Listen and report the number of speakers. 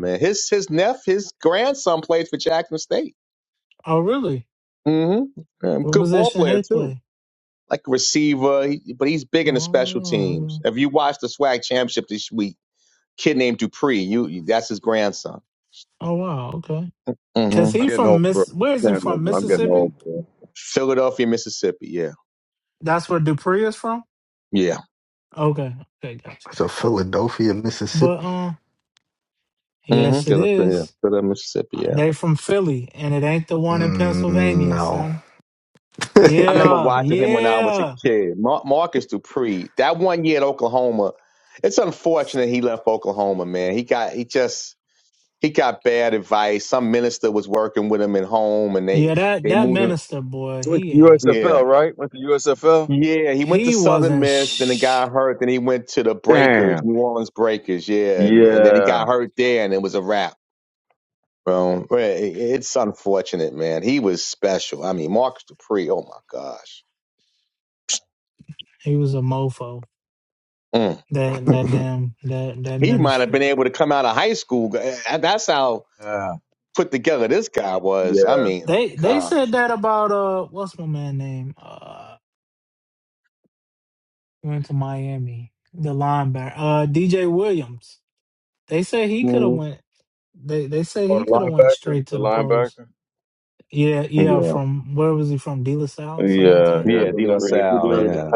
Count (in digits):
4